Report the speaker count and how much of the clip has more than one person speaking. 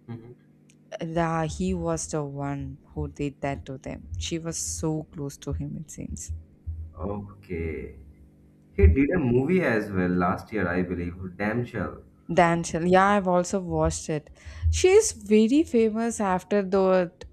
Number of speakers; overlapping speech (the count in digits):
2, no overlap